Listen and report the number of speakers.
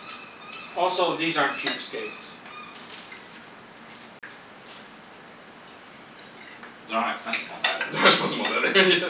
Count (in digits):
3